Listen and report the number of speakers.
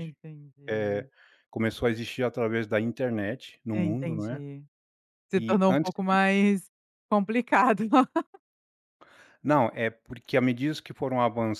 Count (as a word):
two